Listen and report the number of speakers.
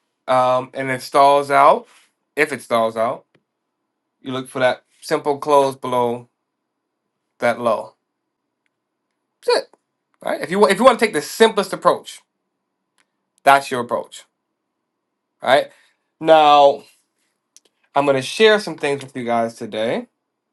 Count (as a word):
one